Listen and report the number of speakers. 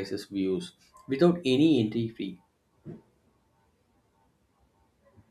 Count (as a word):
one